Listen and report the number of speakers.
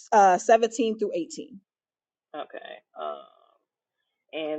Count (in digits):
2